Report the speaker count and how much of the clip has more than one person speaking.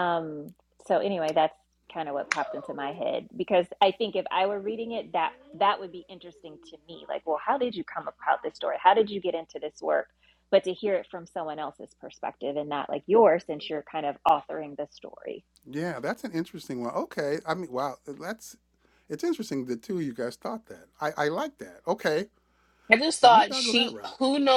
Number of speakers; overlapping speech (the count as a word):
three, about 4%